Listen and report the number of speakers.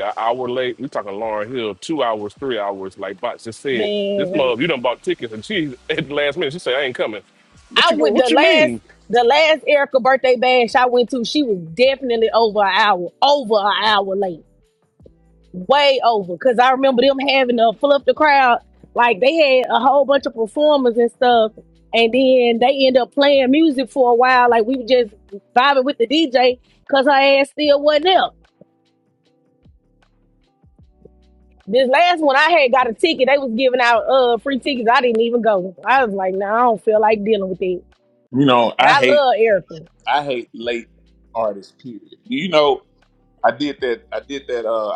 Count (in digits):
3